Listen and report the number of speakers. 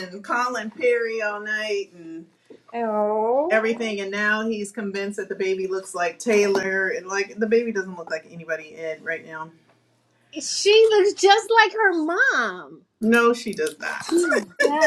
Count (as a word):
two